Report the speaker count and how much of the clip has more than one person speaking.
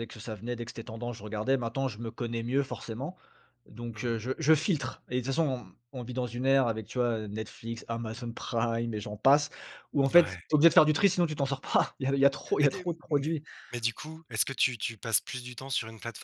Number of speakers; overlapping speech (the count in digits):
2, about 8%